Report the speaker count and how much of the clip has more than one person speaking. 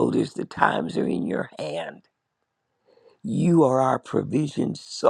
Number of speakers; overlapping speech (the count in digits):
1, no overlap